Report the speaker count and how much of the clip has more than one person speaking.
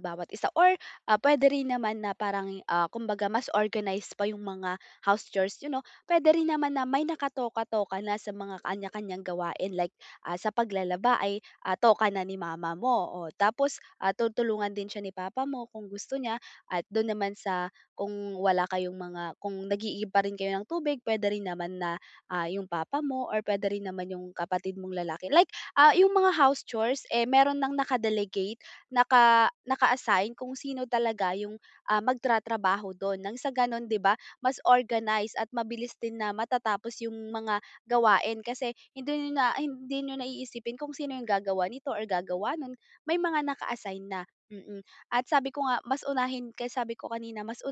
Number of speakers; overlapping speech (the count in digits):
1, no overlap